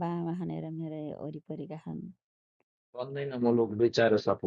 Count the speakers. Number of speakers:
two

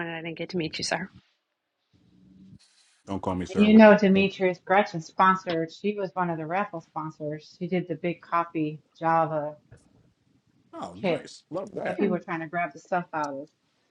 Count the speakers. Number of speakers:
three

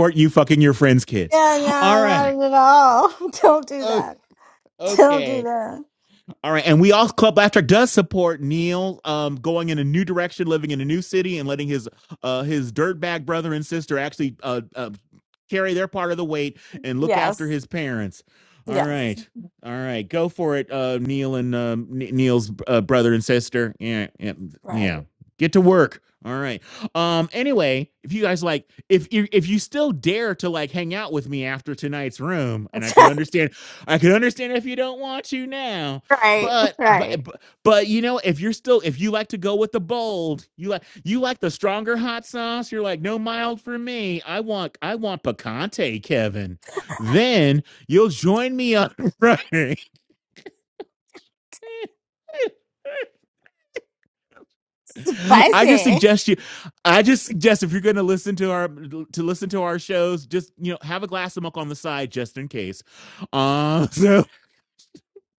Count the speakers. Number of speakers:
two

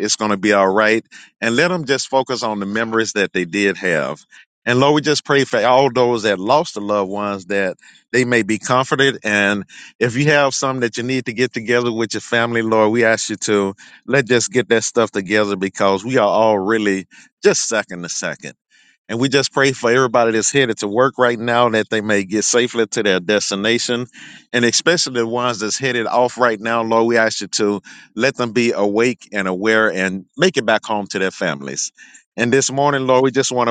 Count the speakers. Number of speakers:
one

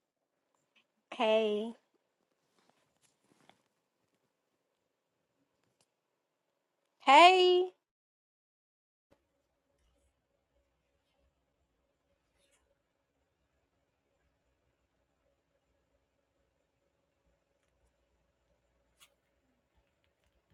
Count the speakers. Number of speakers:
one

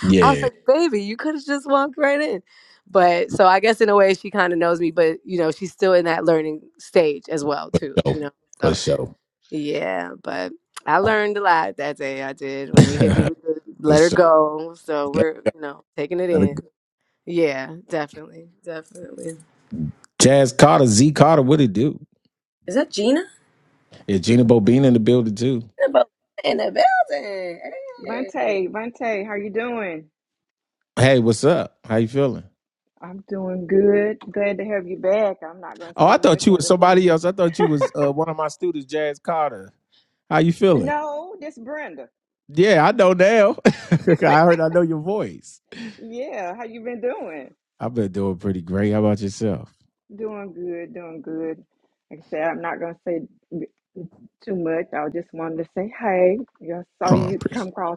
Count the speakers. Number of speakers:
three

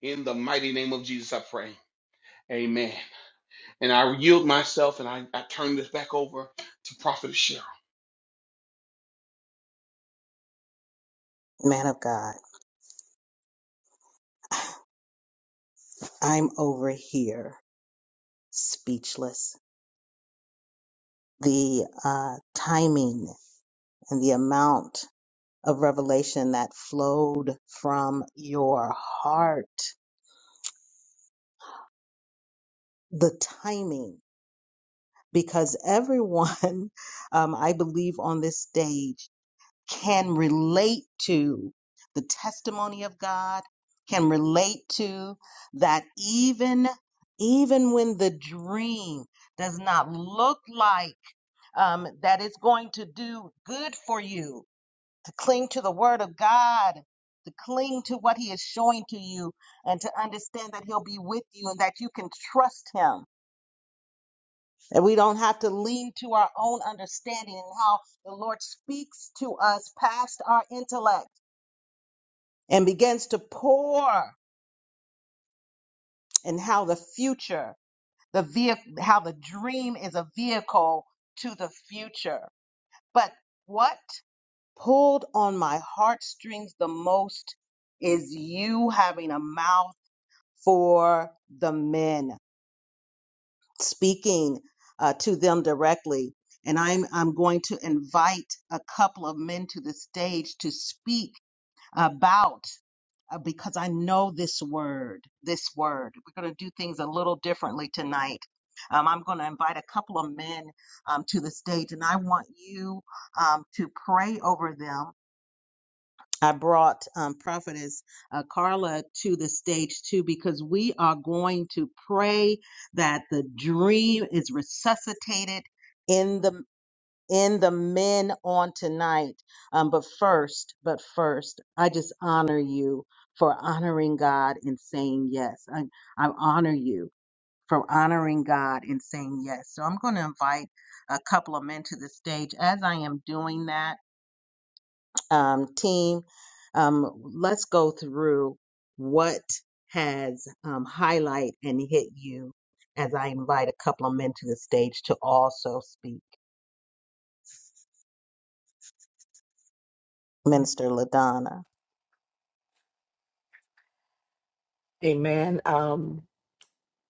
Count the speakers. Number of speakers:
three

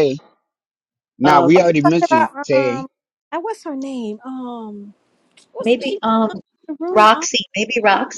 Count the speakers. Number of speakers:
three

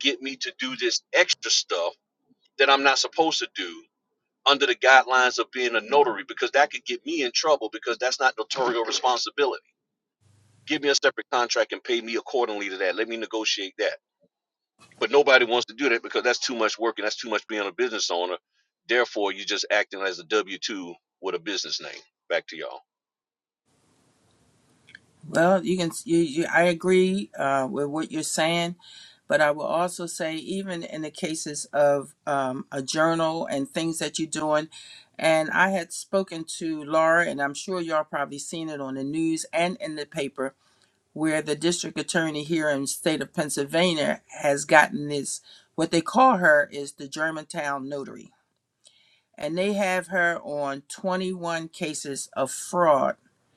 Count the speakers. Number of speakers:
two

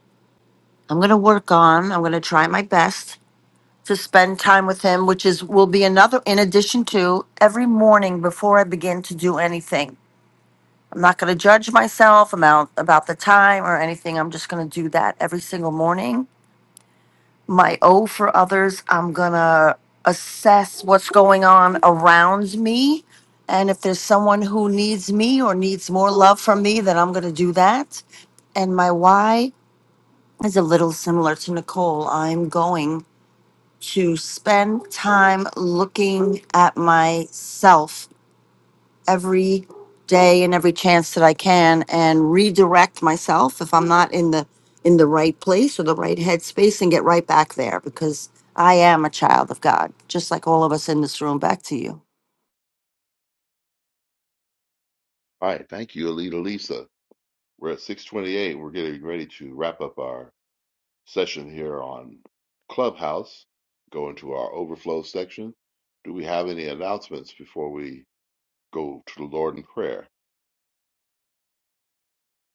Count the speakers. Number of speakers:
two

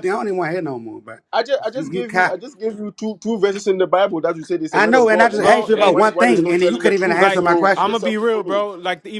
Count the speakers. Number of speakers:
three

